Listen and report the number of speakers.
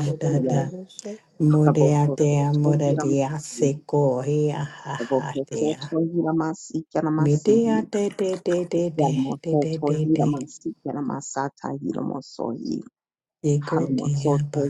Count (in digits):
3